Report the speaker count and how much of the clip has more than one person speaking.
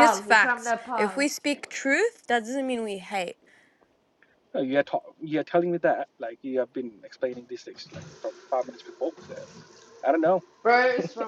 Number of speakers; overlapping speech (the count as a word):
three, about 8%